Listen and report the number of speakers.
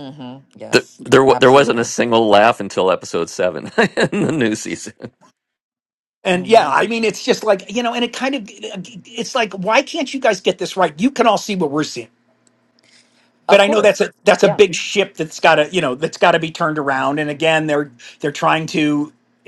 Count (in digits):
3